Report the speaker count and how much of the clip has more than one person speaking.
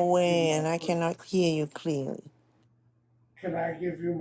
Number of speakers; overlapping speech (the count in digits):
2, about 23%